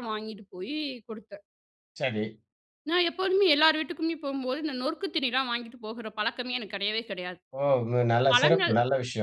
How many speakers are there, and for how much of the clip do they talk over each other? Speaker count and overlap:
two, about 5%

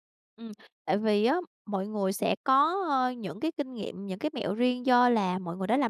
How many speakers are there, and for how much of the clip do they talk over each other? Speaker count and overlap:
one, no overlap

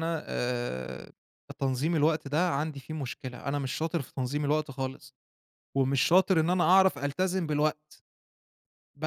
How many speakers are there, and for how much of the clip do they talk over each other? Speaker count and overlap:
one, no overlap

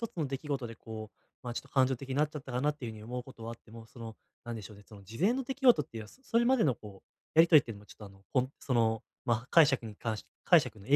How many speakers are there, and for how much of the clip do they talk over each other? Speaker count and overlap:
one, no overlap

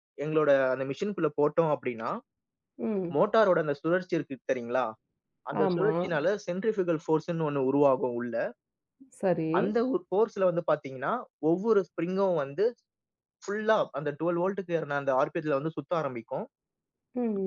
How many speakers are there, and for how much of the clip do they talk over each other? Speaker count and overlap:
two, about 2%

